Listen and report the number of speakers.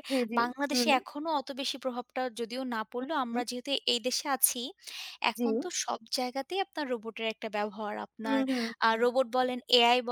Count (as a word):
two